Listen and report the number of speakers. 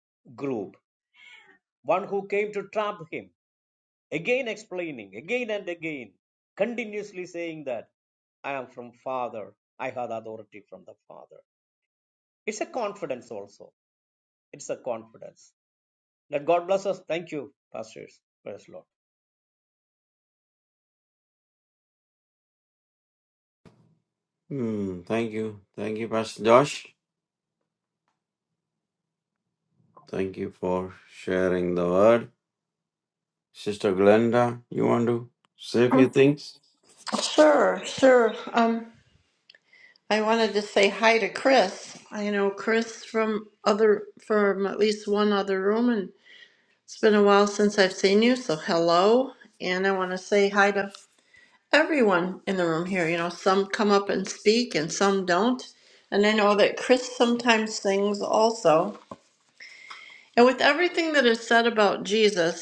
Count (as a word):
three